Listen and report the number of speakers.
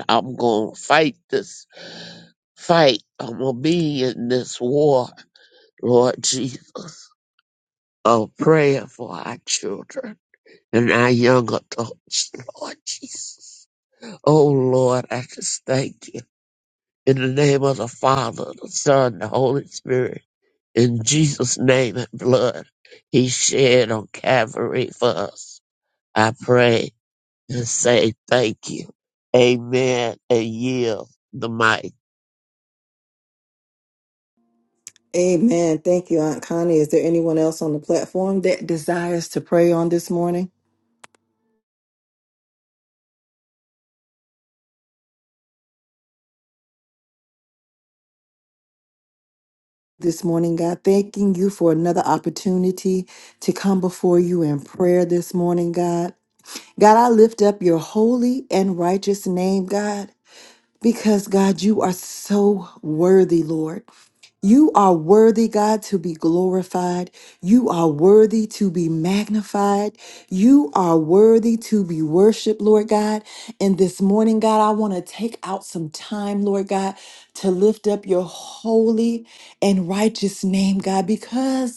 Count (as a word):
two